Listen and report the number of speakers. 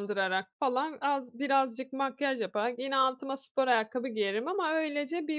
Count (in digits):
1